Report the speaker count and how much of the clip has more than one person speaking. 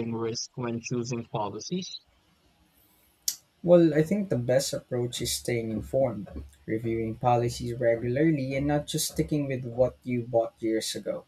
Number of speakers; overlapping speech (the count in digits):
2, no overlap